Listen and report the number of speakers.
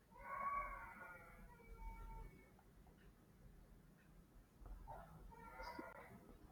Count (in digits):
0